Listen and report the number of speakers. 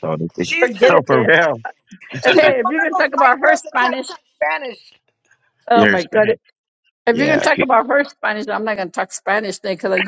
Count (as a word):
three